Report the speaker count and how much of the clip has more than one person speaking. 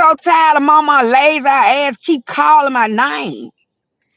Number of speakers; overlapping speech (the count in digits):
1, no overlap